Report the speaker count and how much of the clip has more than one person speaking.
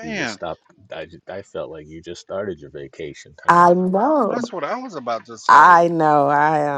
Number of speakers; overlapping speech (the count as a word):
three, about 17%